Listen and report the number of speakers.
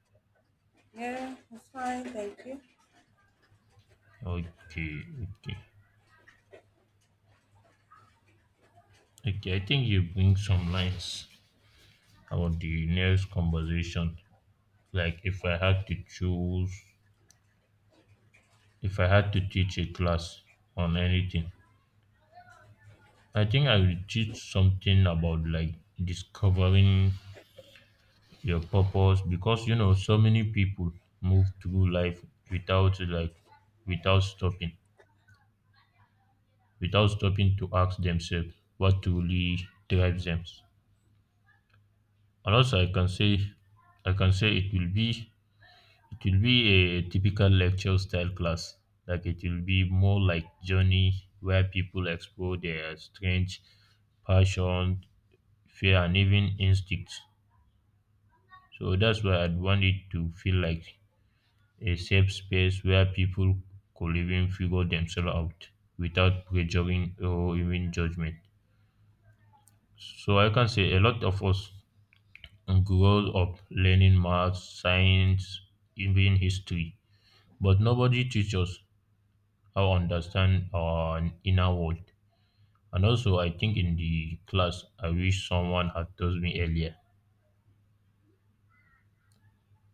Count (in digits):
2